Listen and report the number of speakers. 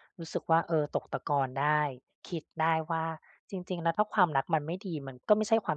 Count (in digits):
1